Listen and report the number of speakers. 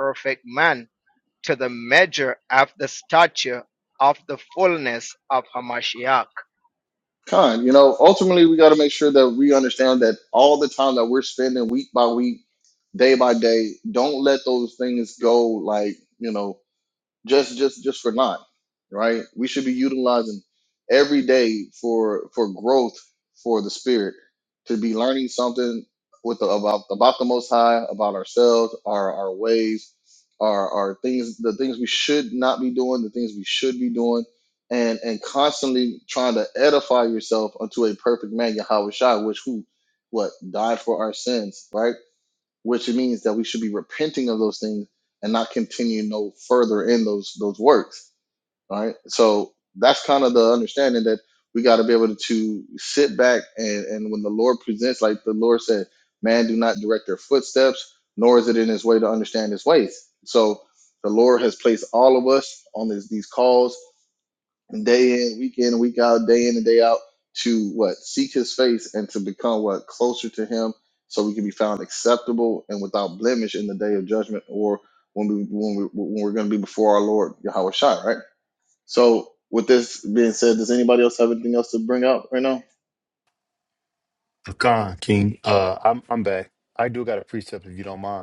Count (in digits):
3